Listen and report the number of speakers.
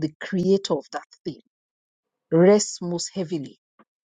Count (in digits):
1